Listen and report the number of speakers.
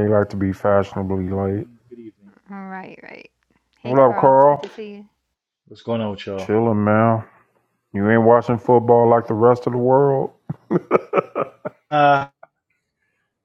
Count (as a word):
three